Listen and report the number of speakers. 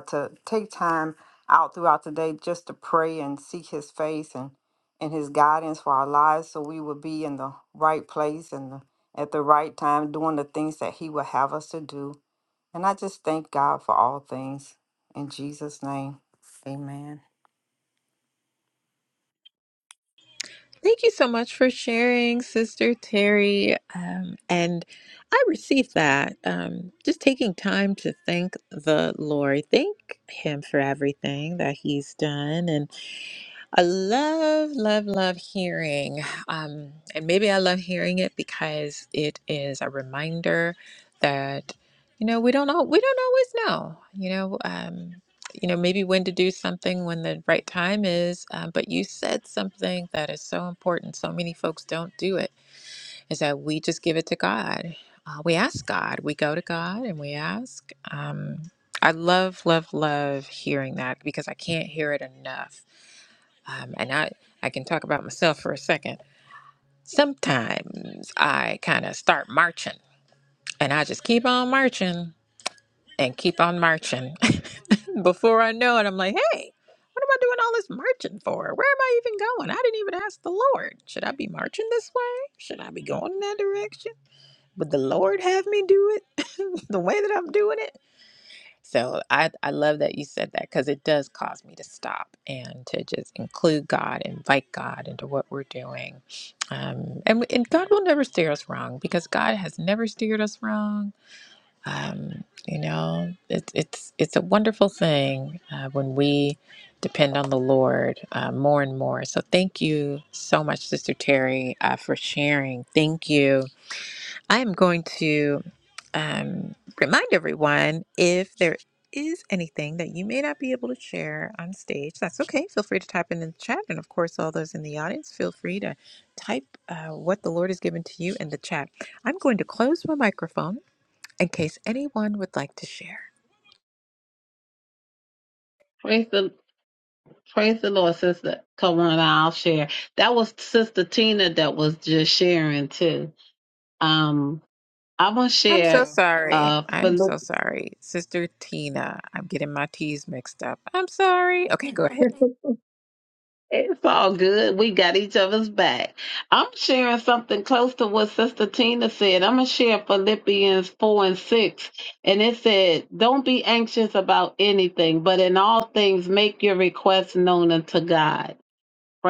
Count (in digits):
3